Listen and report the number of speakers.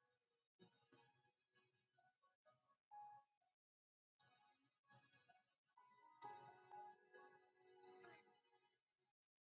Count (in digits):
0